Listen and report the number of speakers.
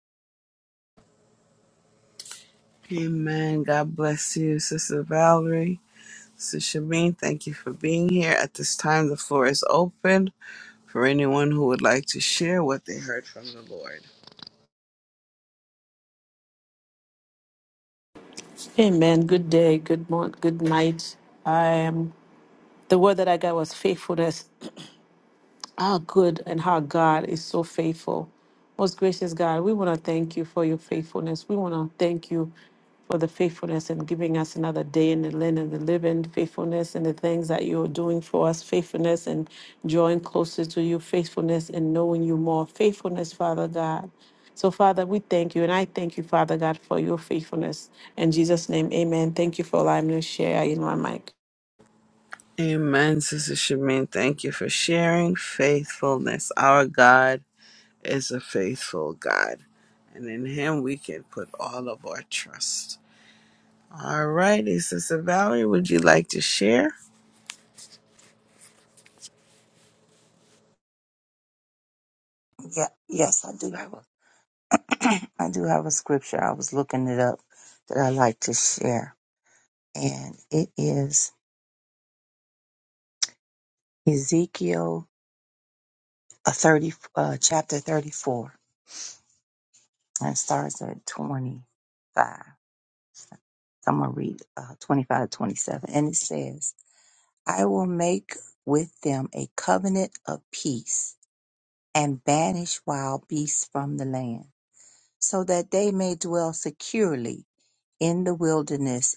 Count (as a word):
three